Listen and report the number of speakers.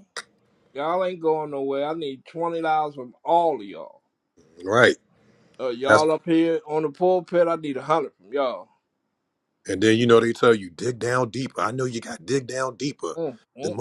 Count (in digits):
2